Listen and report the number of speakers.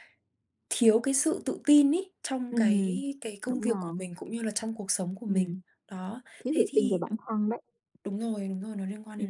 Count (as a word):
two